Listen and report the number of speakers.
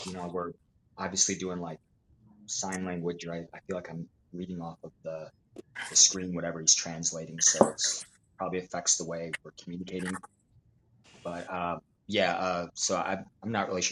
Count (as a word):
one